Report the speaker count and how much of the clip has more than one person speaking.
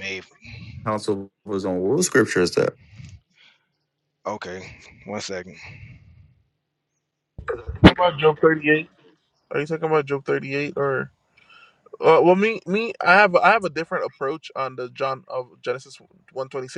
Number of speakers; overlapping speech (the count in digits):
3, no overlap